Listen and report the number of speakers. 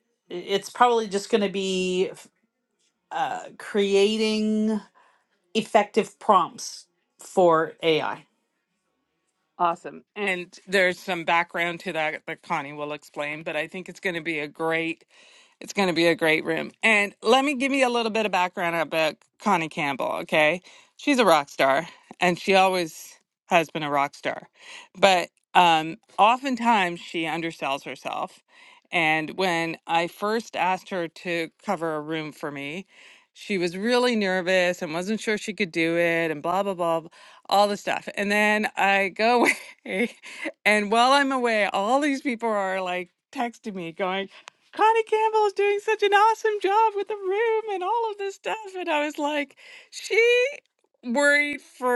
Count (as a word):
two